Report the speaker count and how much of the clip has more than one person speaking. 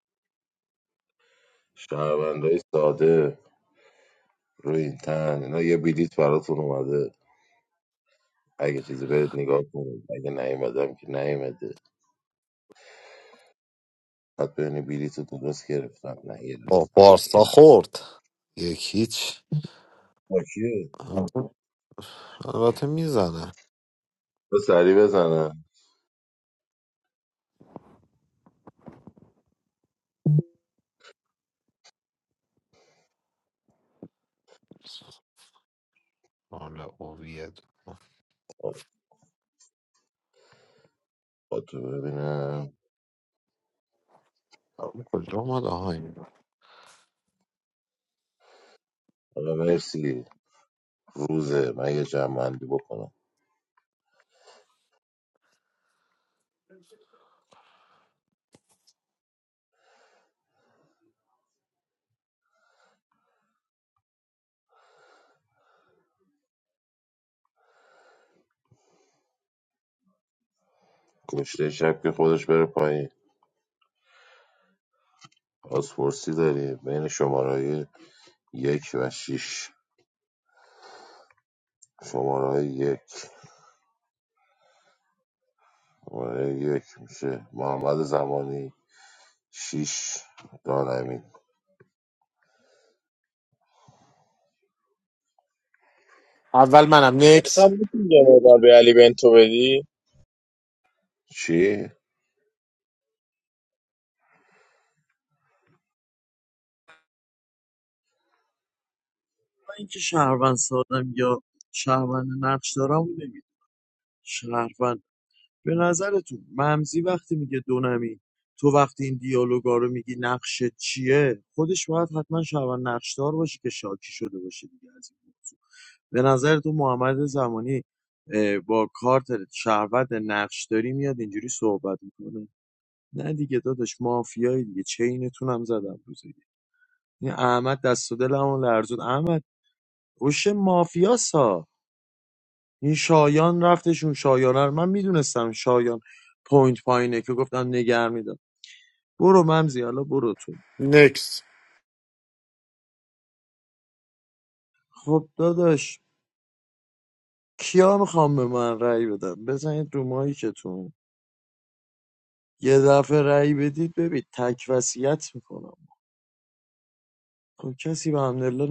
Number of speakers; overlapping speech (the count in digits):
5, under 1%